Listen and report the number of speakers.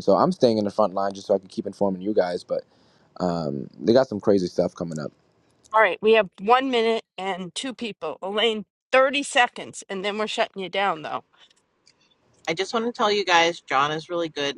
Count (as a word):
three